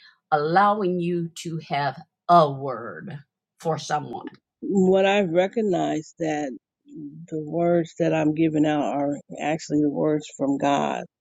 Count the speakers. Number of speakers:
two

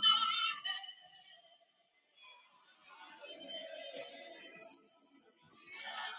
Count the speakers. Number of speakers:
zero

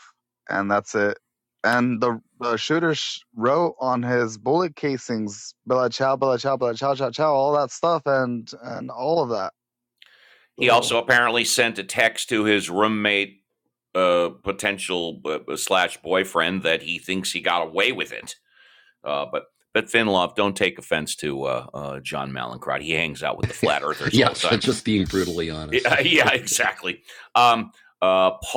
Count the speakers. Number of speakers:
three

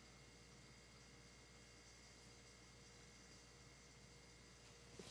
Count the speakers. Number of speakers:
zero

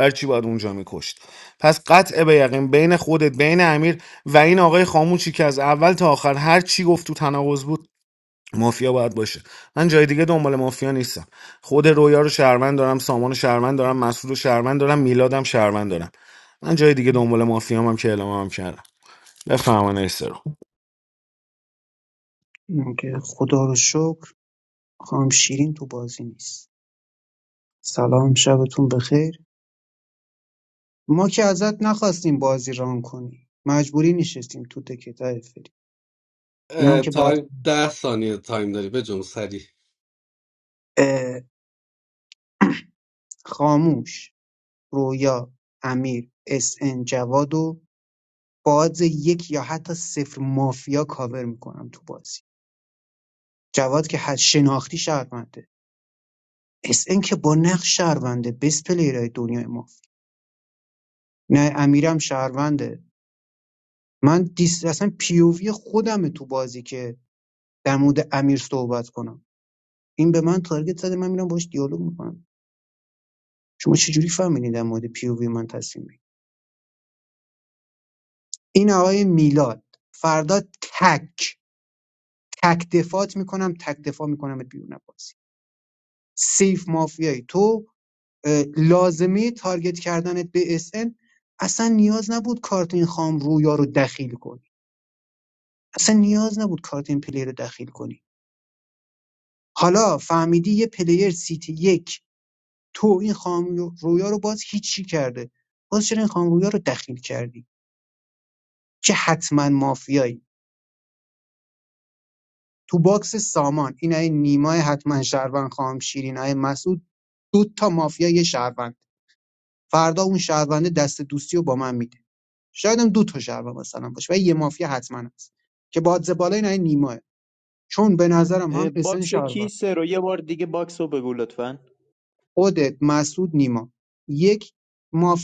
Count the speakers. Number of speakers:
four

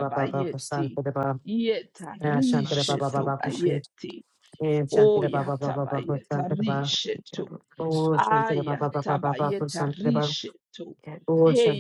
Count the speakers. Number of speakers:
two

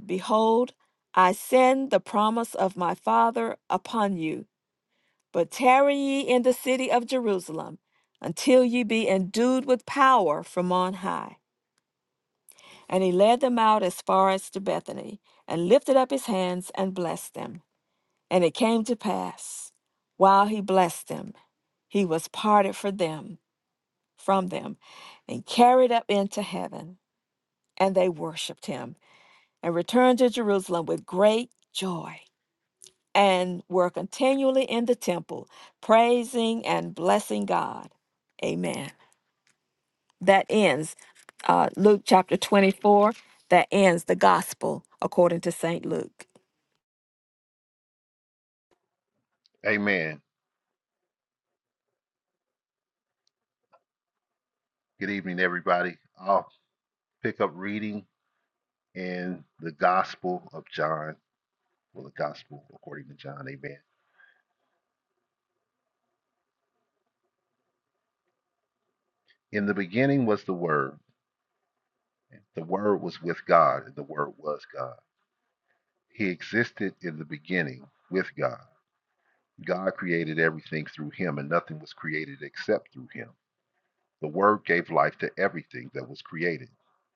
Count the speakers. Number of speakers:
two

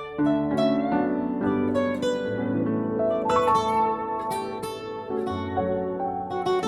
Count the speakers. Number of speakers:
zero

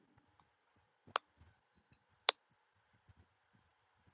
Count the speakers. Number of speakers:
zero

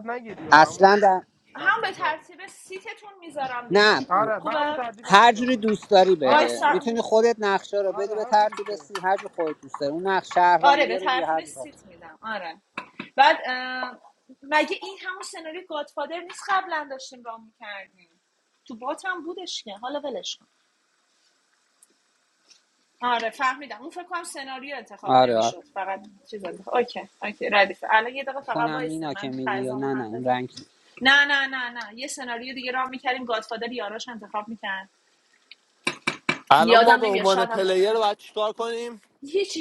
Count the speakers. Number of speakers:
four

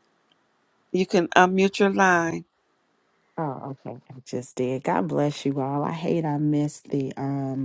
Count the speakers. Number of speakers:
two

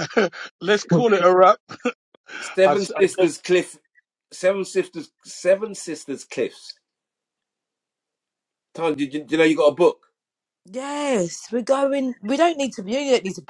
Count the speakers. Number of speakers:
three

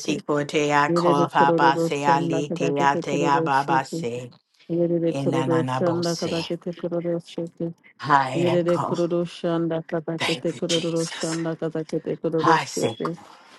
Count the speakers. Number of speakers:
two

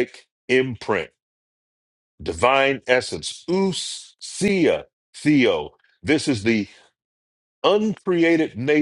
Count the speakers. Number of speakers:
one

